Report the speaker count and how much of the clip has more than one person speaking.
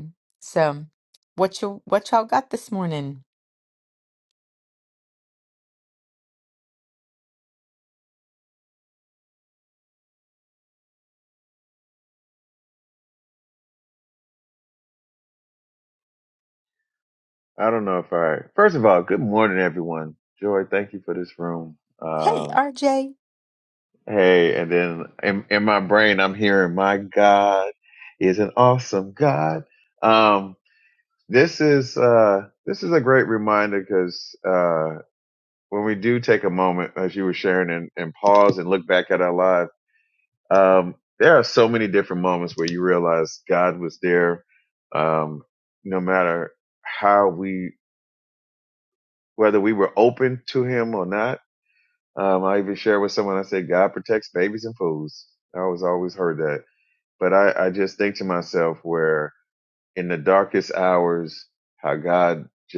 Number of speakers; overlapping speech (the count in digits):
2, about 1%